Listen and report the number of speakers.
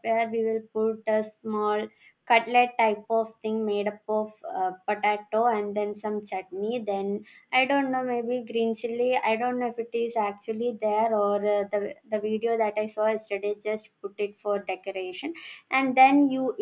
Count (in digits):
1